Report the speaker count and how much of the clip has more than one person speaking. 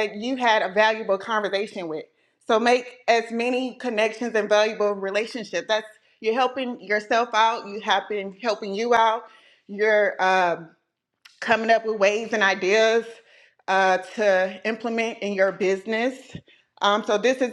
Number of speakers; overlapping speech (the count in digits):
1, no overlap